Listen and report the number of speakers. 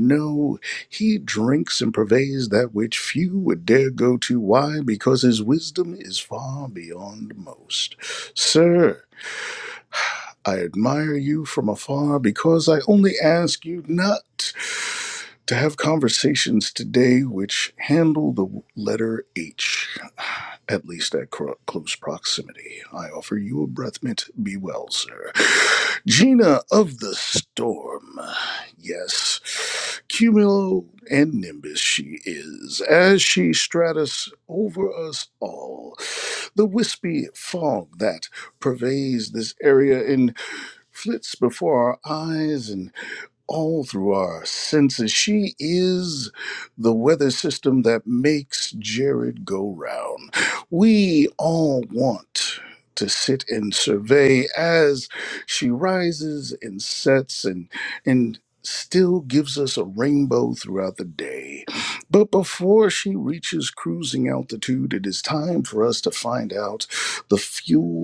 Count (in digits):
1